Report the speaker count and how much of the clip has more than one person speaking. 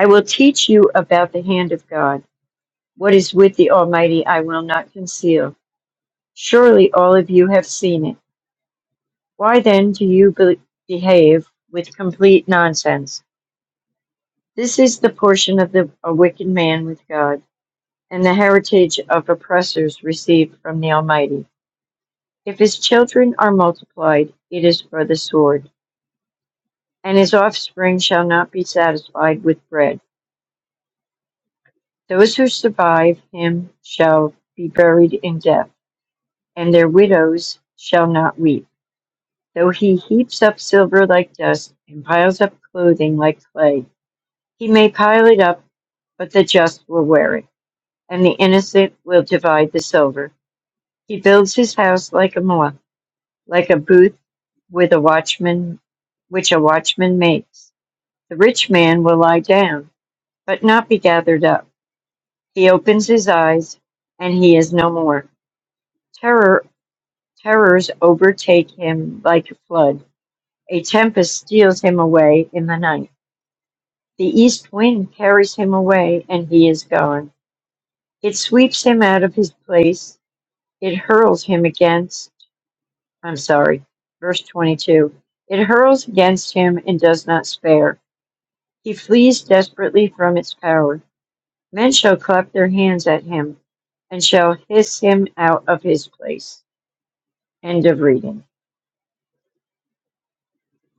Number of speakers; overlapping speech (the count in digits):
1, no overlap